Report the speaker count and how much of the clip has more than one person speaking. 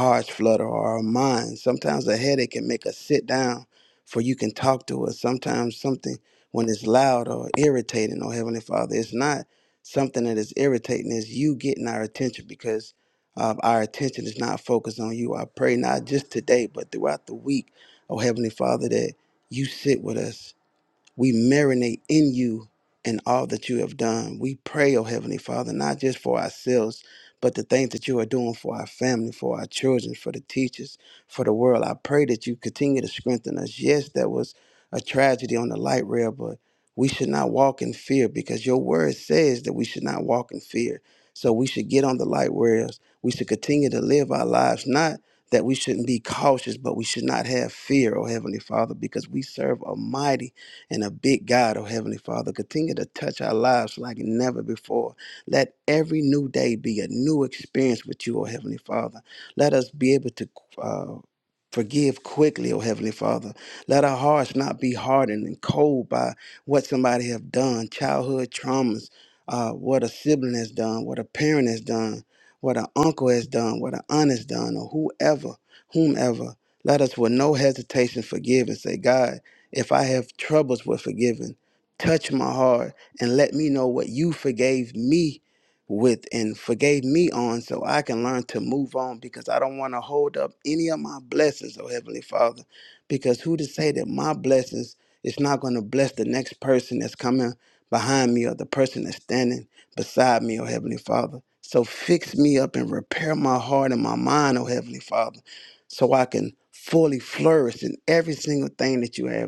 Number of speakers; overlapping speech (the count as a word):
one, no overlap